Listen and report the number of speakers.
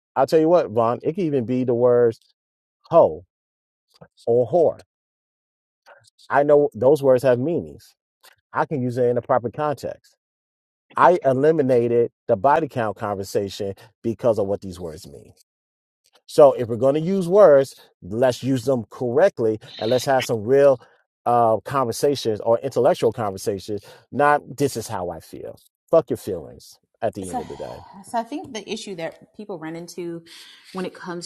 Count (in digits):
2